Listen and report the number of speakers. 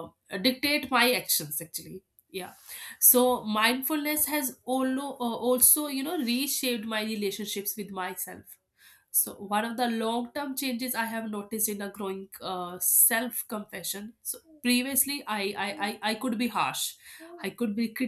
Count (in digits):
1